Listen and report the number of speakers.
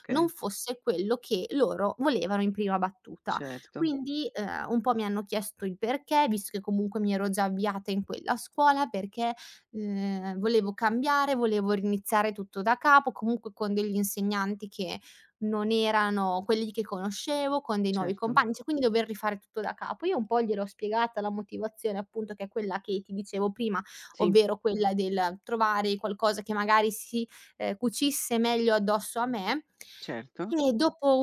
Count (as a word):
two